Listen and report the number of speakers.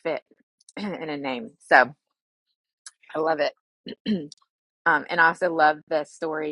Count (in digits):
1